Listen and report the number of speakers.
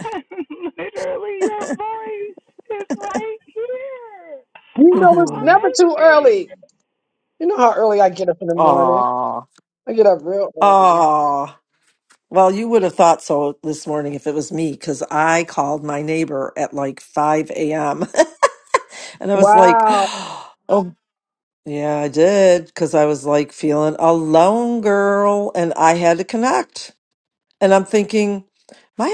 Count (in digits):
3